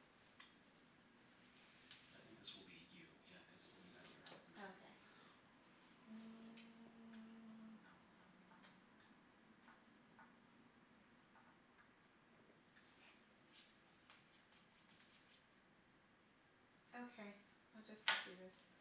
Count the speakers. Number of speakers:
2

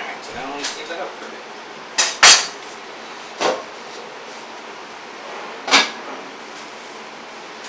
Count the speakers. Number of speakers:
1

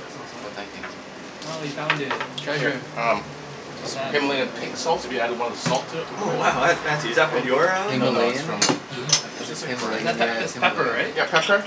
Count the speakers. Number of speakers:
4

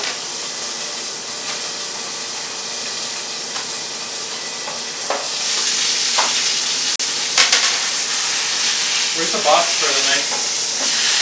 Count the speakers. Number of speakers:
1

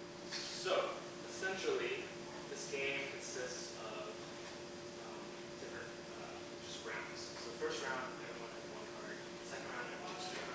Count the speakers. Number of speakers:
1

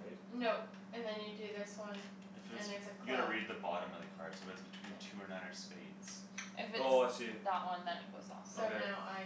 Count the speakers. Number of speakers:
4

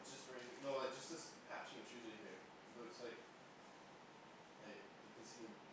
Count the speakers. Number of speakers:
1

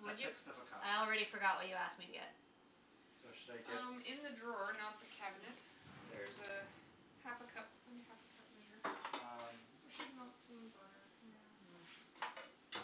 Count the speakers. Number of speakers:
3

